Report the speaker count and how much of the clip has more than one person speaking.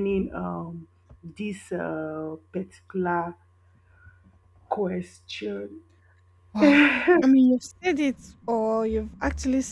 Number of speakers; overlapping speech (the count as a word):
two, no overlap